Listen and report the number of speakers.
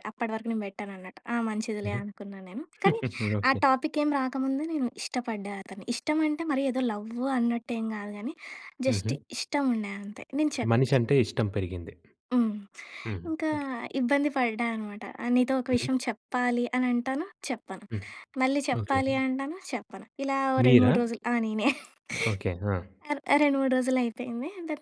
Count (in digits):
2